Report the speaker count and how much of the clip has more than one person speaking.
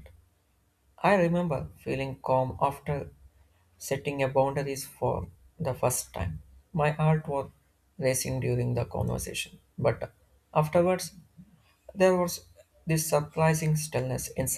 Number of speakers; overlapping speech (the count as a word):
one, no overlap